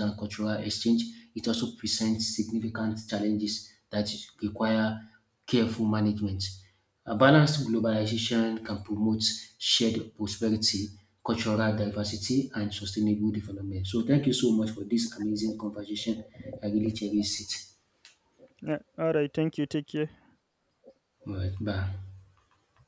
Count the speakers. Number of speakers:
two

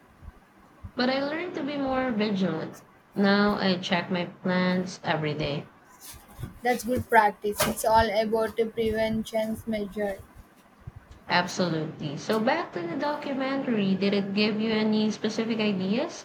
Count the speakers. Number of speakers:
two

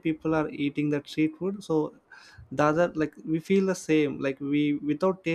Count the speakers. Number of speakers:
one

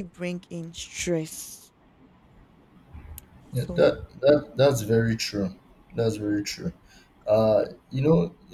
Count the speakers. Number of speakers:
two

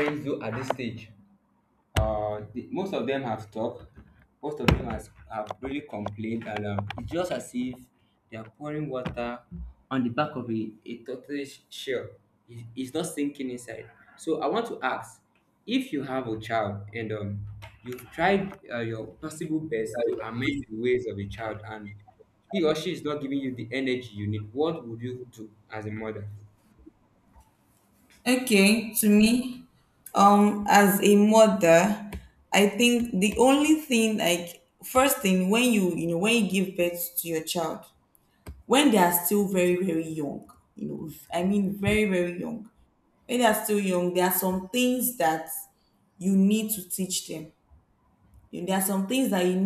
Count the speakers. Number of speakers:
two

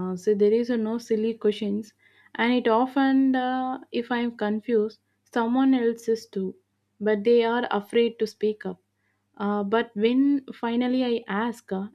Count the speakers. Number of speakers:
one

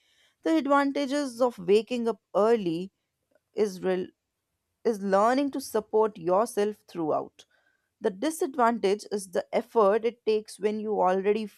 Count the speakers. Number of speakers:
one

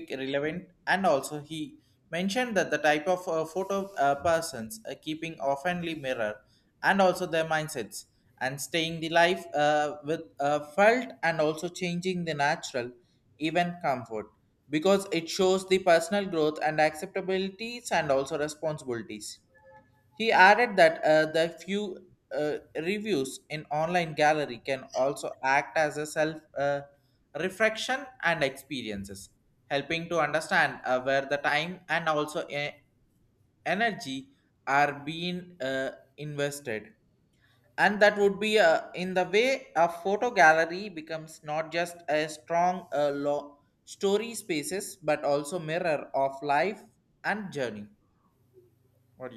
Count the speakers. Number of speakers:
one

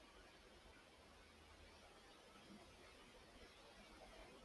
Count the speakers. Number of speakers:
zero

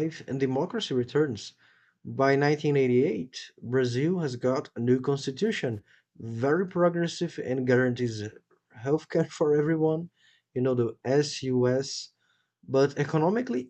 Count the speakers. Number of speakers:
one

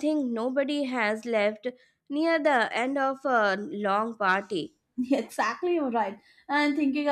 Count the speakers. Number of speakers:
two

